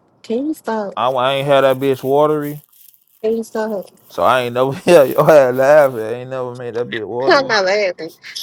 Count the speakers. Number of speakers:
2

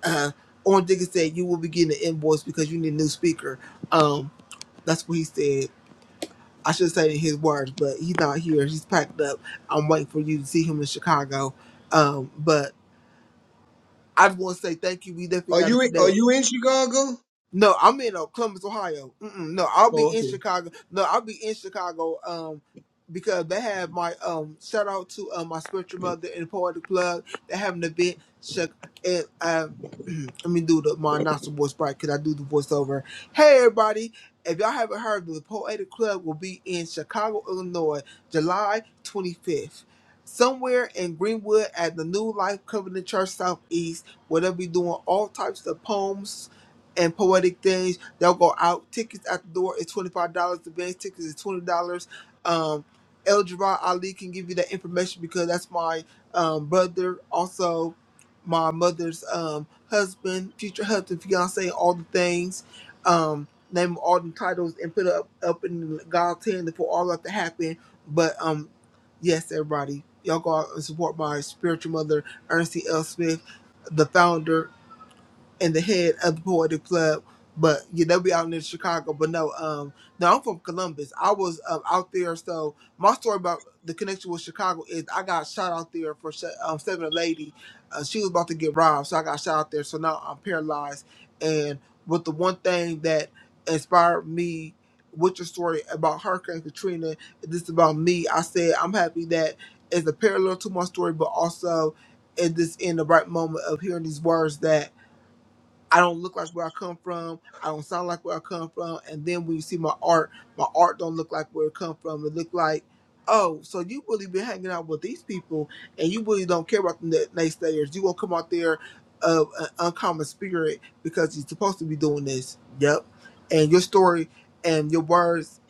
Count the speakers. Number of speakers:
2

